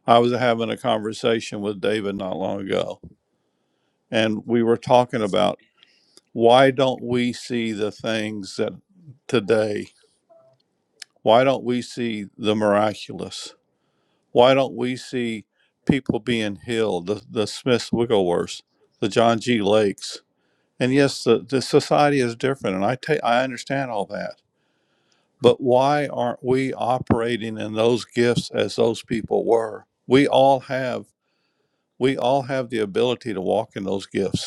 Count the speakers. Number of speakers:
one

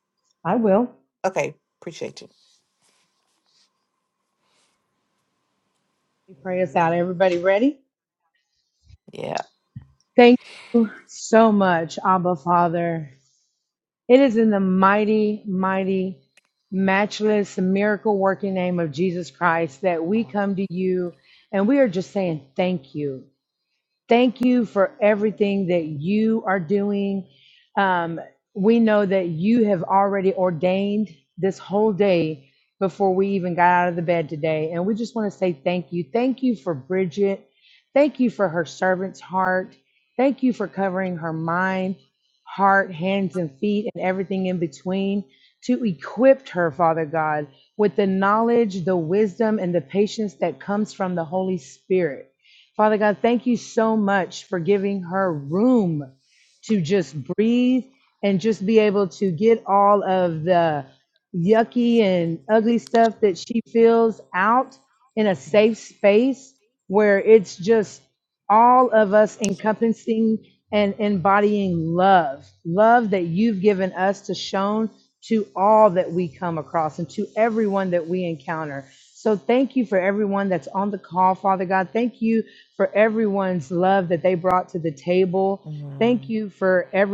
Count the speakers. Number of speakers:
two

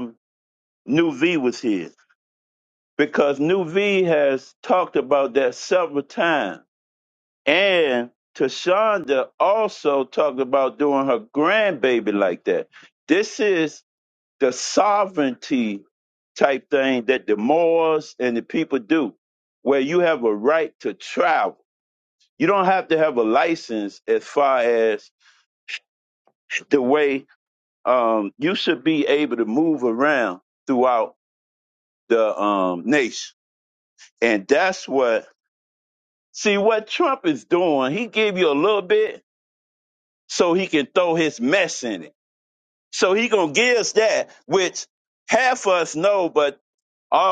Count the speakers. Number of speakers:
one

